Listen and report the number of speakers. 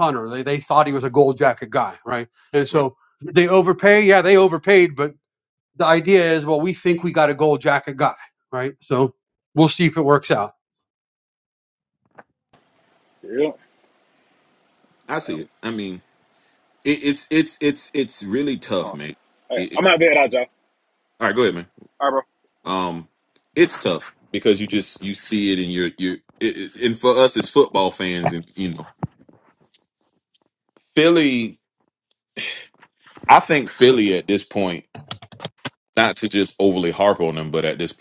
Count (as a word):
three